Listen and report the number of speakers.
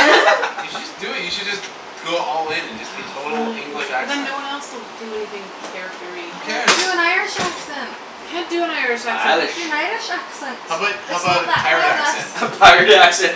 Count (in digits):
4